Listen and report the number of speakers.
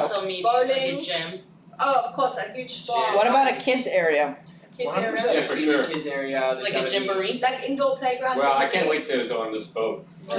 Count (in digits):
5